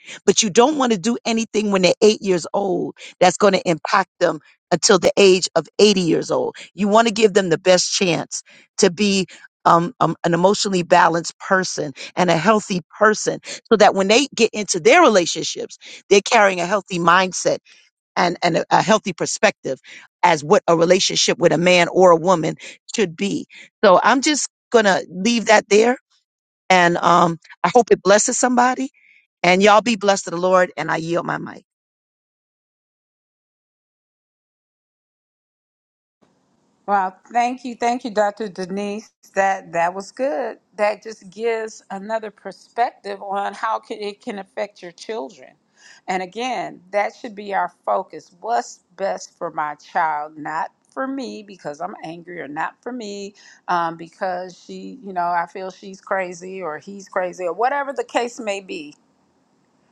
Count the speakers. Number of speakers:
2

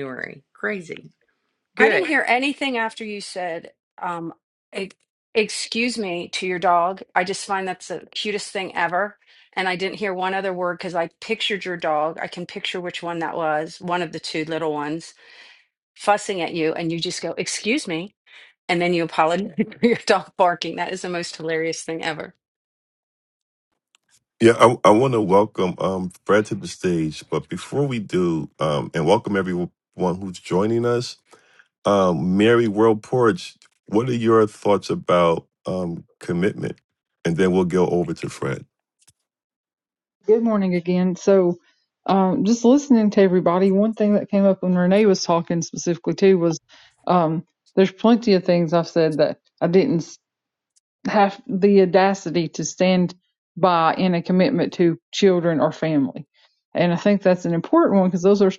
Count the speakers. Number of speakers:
4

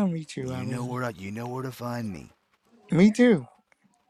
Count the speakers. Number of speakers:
2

